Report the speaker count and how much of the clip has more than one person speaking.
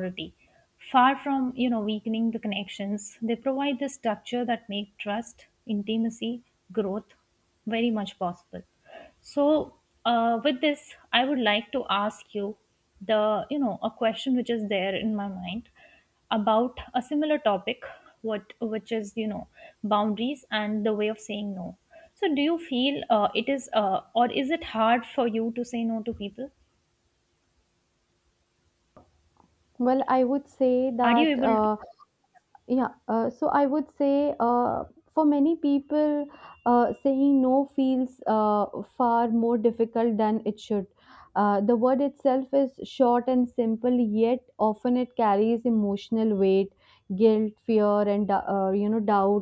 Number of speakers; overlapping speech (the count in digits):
2, about 1%